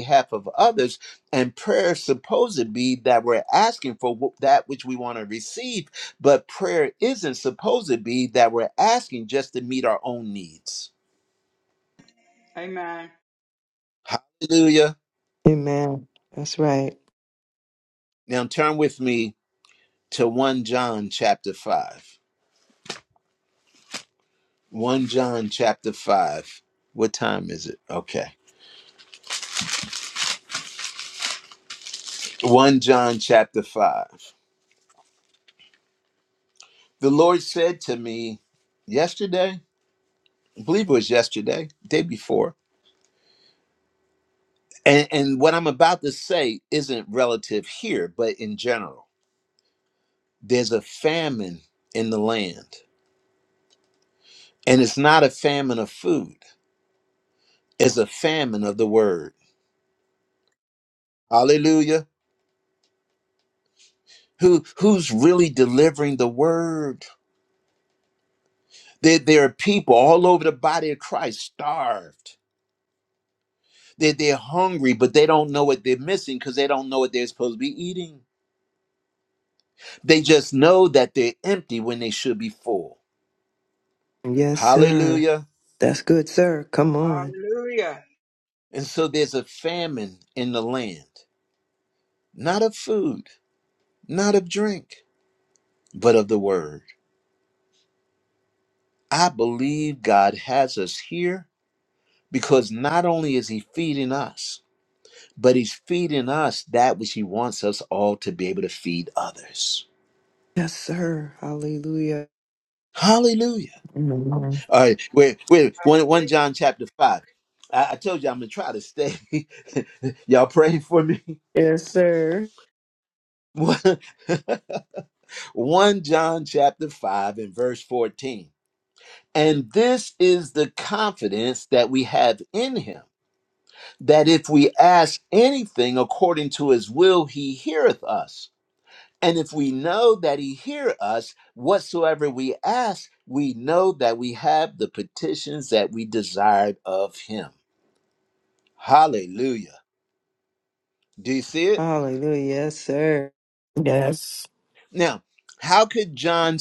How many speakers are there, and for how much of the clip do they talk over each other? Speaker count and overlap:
four, about 1%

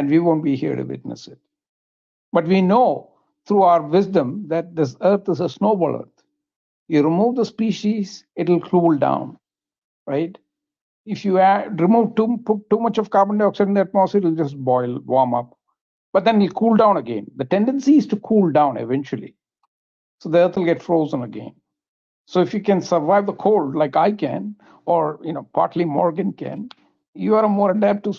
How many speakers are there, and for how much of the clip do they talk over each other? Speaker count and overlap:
one, no overlap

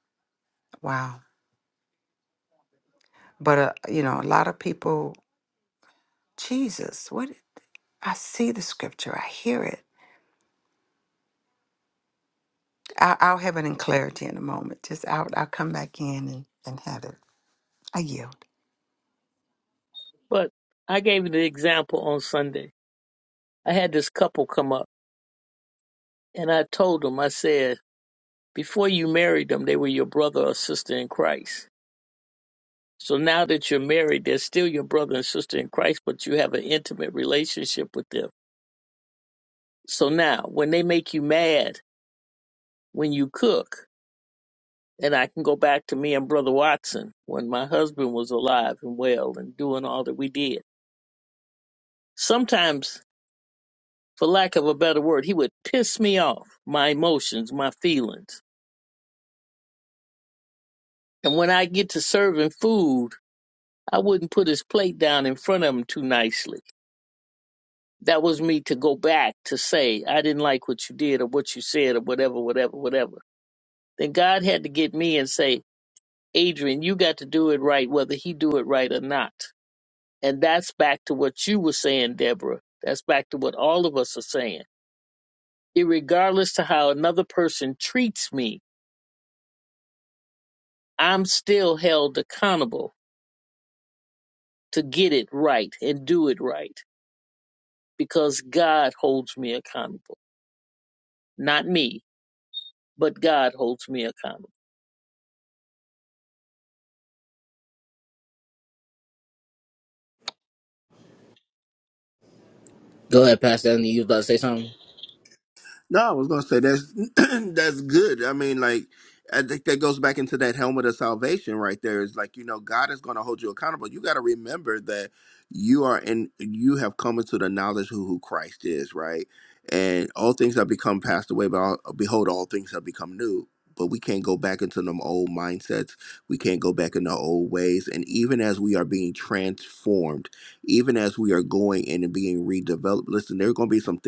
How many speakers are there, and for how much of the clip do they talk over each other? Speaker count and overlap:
four, no overlap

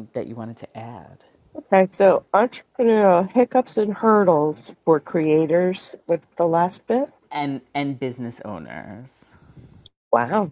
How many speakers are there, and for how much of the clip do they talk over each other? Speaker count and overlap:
two, no overlap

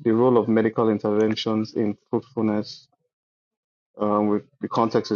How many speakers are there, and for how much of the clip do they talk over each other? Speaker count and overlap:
one, no overlap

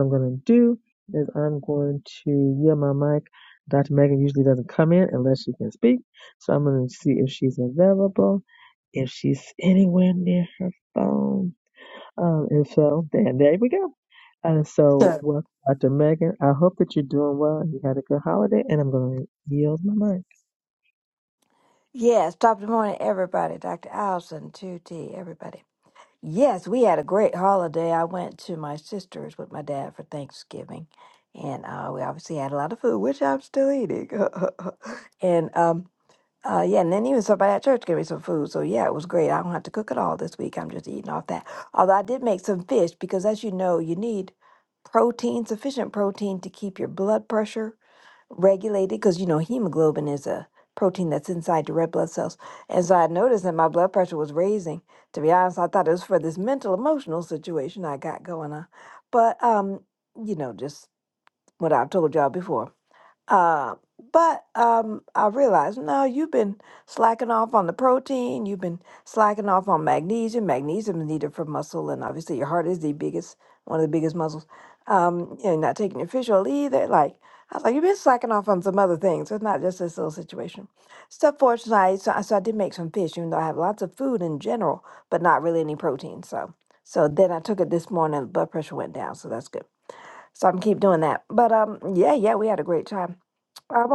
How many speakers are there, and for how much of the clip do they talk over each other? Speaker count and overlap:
two, under 1%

